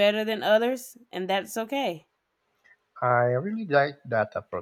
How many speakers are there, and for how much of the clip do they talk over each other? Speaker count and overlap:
2, no overlap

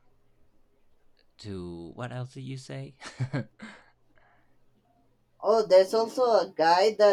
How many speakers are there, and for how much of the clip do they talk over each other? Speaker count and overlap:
2, no overlap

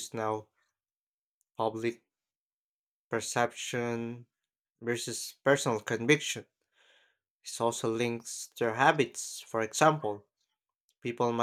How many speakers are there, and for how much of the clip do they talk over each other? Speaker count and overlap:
1, no overlap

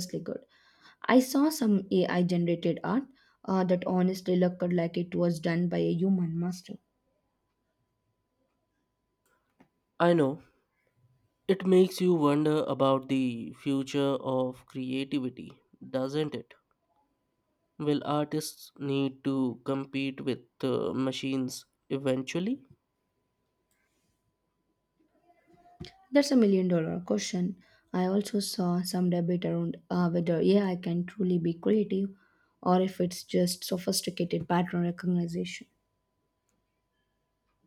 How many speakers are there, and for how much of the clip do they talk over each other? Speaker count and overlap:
2, no overlap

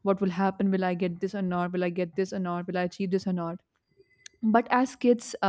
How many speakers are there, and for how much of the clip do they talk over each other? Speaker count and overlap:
1, no overlap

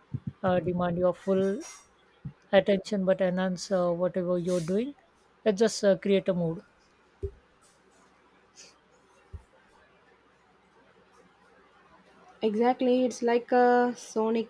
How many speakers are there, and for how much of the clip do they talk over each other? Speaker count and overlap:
2, no overlap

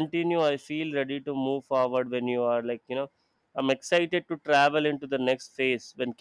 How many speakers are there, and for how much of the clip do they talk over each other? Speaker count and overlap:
1, no overlap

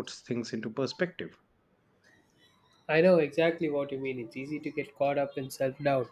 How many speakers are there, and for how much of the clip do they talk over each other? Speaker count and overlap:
2, no overlap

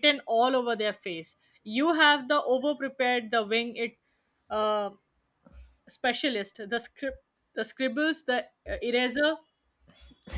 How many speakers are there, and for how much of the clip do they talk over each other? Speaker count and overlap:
1, no overlap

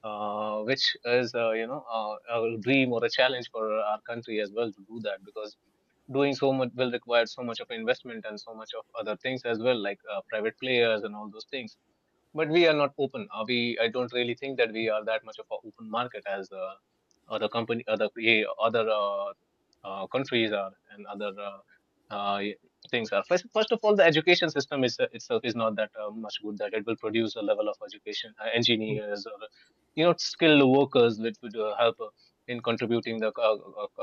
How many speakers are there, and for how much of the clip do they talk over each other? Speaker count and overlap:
1, no overlap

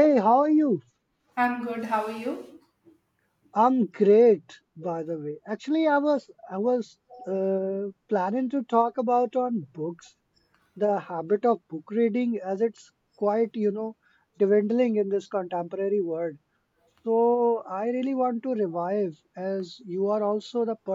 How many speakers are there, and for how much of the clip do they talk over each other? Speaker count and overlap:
2, no overlap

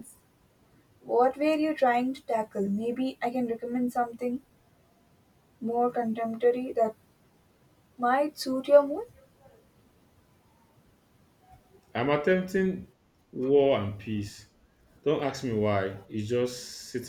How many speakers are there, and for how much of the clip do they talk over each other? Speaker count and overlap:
2, no overlap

